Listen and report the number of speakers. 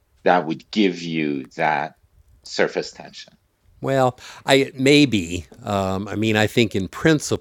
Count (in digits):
2